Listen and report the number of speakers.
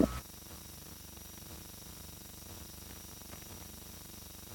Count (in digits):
0